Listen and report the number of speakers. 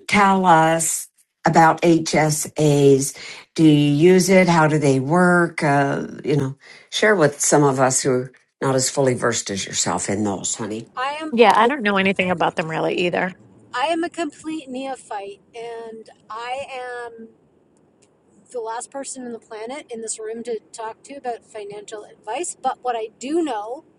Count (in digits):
3